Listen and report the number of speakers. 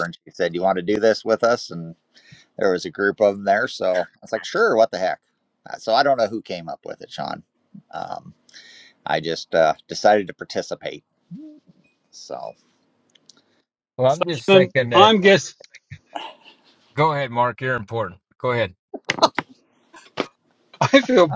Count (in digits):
3